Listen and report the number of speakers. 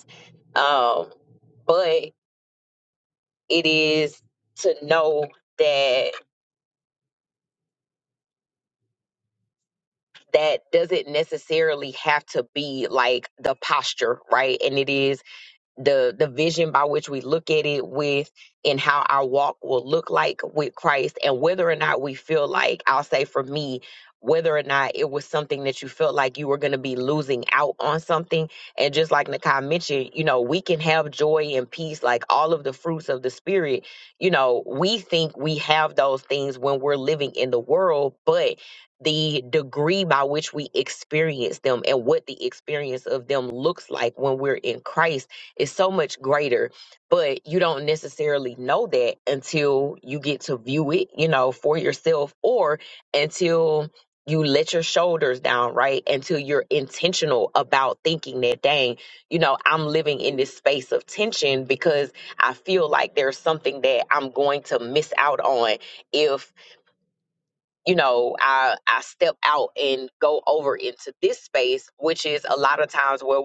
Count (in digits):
1